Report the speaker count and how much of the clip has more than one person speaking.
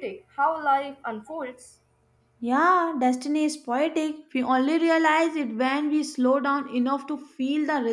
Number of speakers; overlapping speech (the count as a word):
two, no overlap